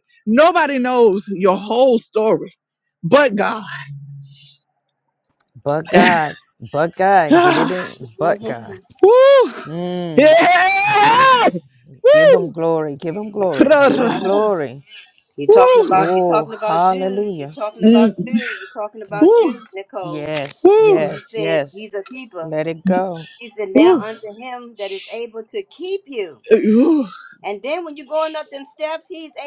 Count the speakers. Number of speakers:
three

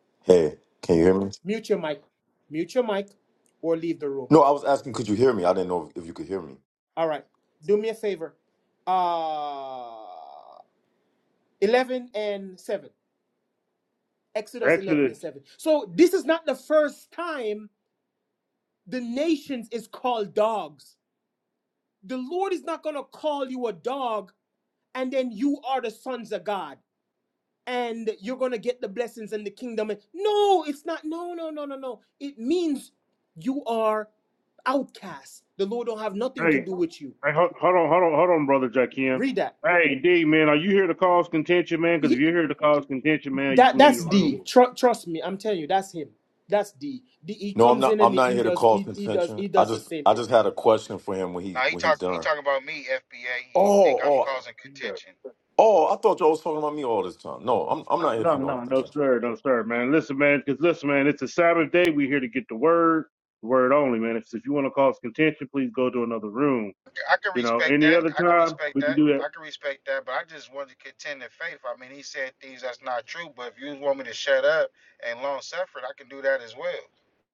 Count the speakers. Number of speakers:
four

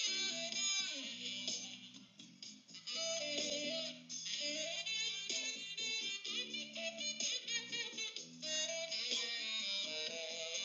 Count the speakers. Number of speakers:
zero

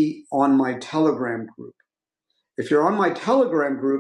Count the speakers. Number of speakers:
one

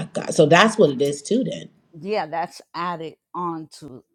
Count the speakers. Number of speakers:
two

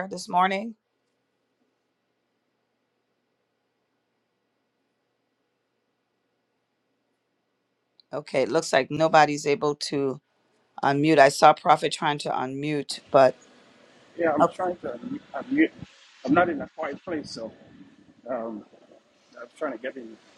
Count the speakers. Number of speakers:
two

